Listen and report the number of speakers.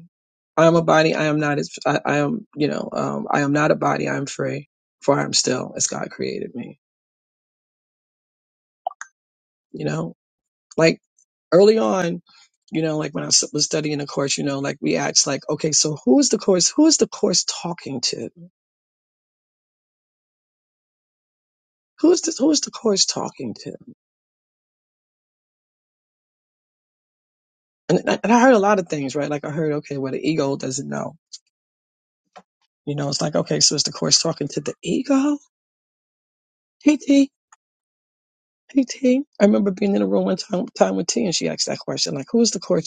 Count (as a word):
one